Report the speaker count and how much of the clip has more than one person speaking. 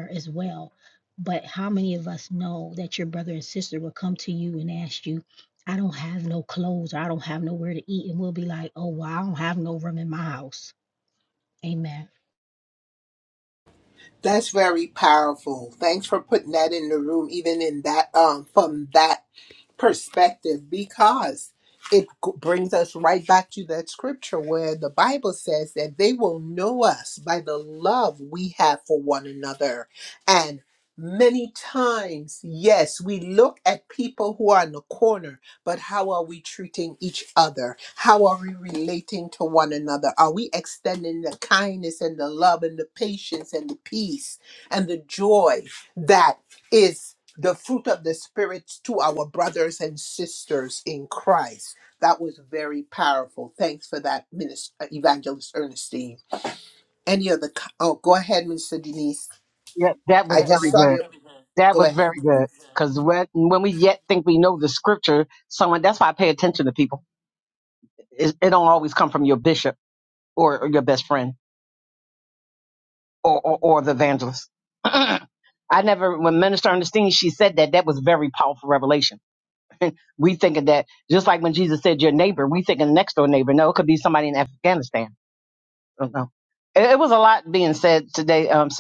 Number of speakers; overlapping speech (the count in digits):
3, about 1%